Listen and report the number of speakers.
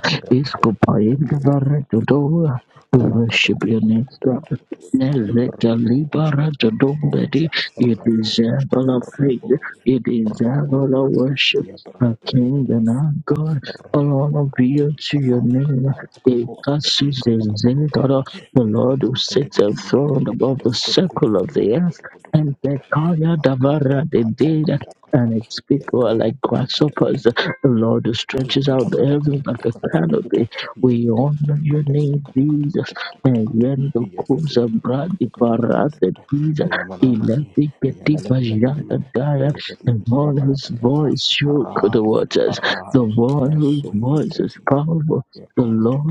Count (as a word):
two